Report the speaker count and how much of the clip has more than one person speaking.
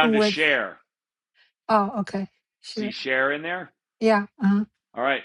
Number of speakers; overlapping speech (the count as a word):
two, about 12%